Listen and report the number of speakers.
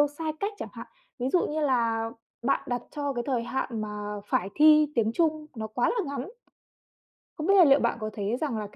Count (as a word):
one